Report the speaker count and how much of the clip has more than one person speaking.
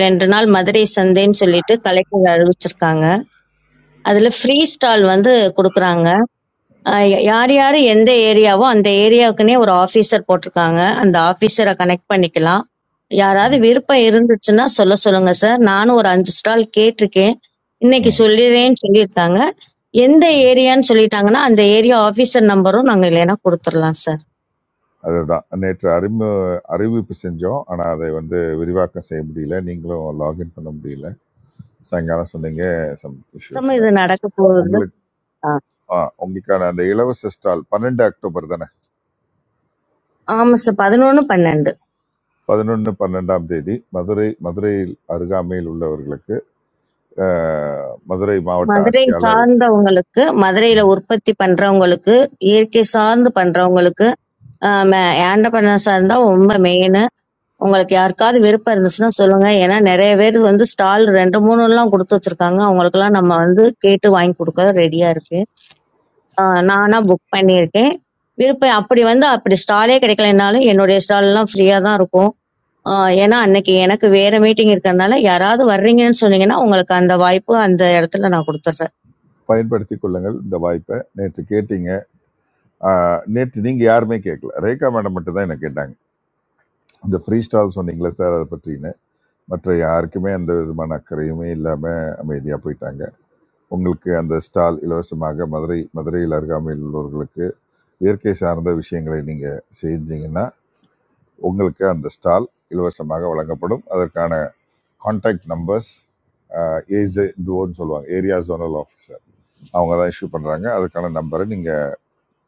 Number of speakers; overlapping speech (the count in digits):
2, about 2%